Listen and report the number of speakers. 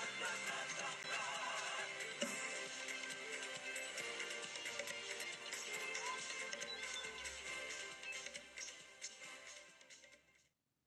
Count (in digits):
0